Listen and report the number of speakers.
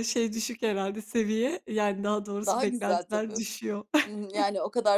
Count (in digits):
2